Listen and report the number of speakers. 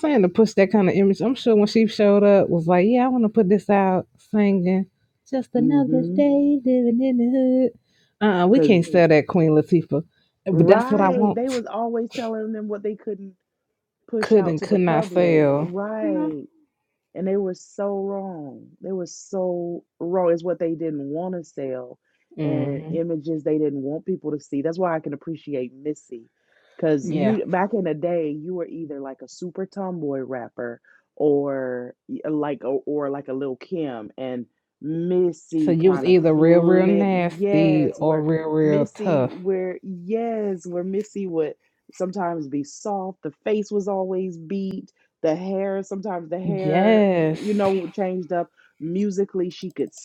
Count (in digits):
2